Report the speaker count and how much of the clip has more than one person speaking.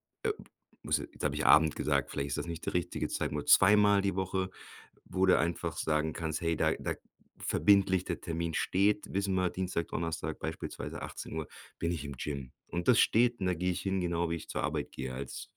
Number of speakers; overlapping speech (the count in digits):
1, no overlap